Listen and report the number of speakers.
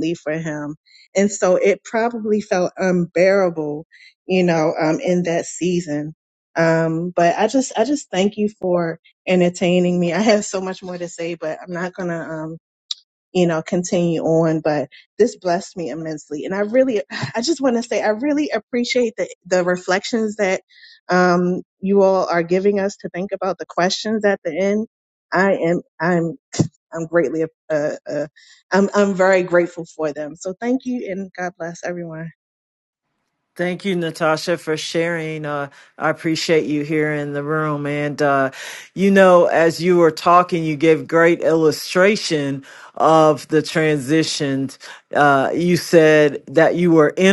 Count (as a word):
two